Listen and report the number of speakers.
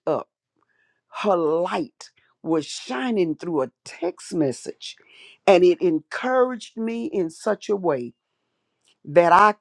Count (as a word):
one